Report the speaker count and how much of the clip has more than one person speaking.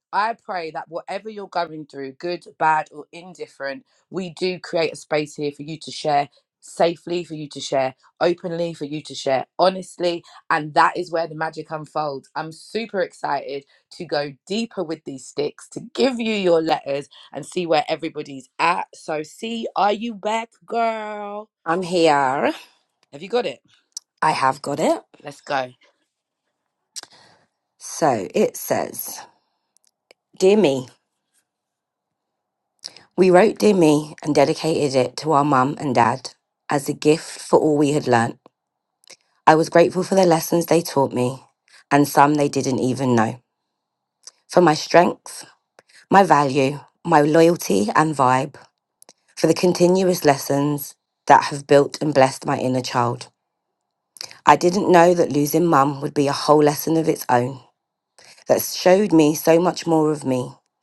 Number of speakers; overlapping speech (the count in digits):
2, no overlap